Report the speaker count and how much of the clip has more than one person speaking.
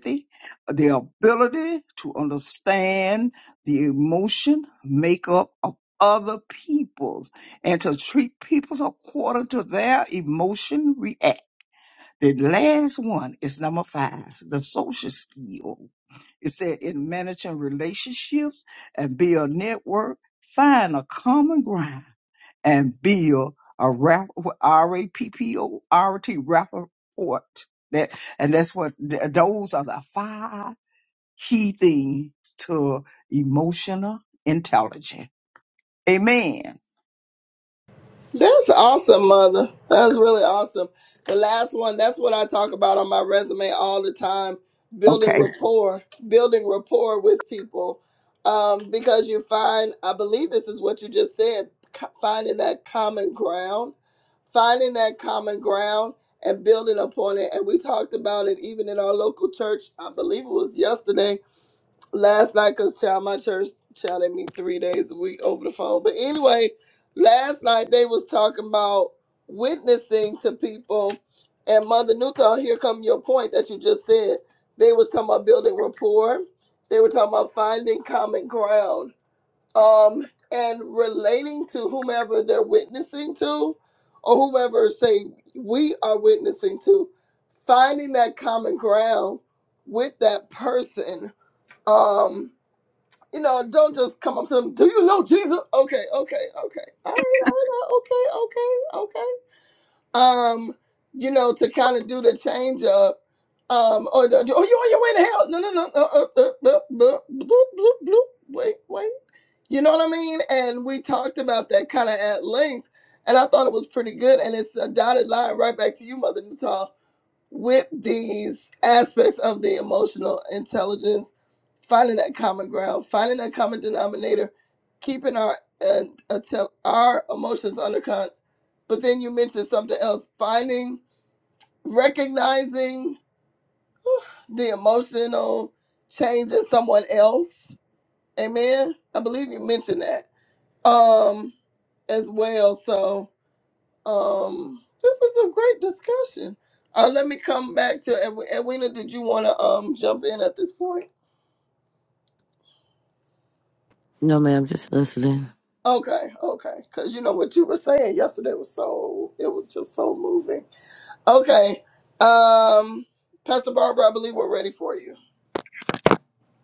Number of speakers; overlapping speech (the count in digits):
3, under 1%